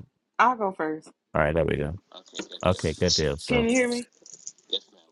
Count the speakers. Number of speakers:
2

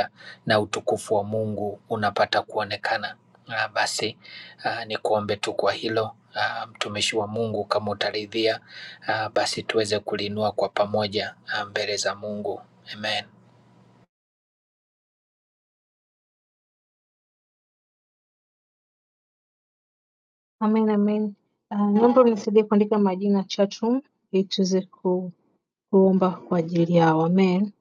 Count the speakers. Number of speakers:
2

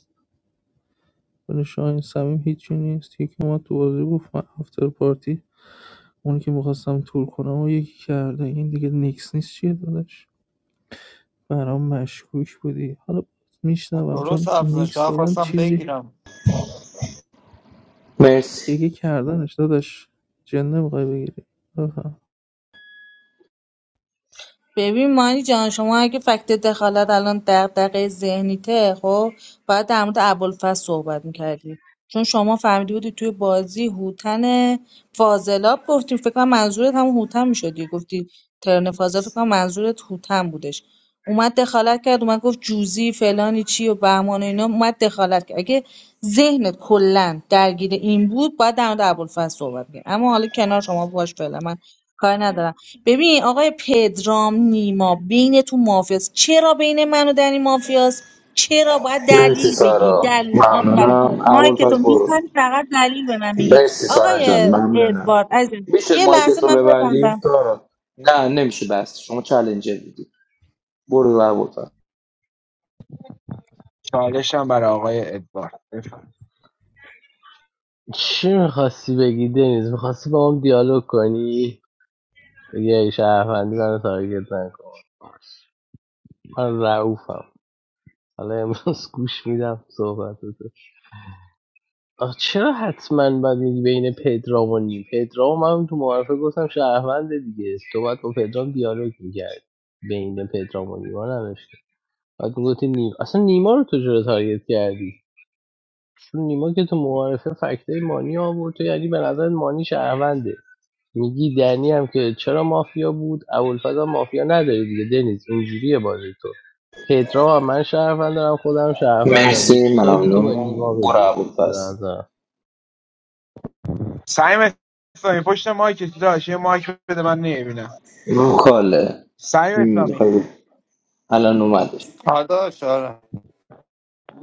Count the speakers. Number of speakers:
6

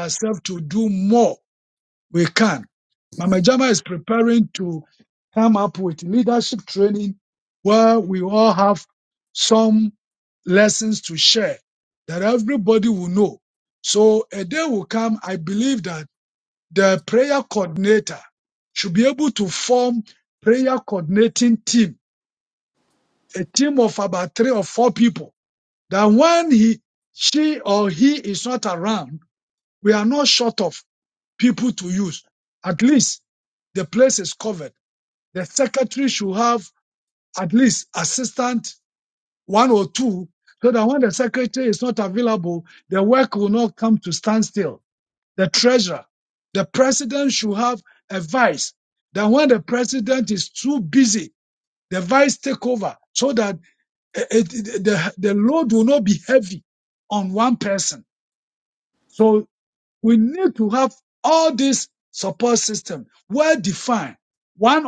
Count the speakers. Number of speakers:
1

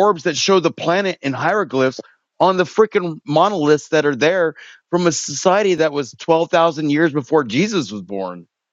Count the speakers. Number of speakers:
1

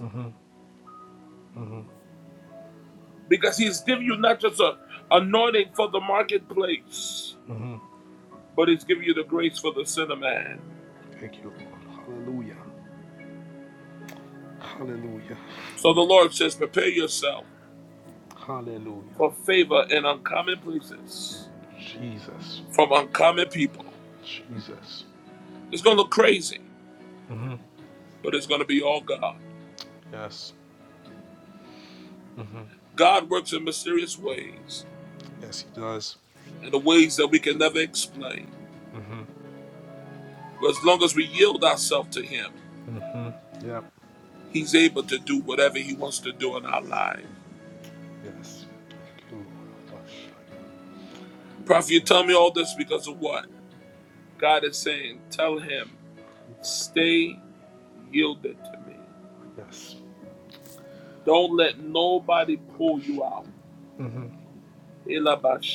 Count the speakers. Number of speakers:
2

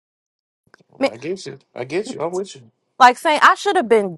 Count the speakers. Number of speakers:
2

